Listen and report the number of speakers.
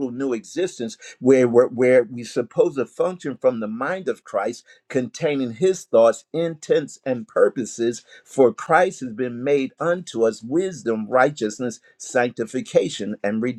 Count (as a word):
one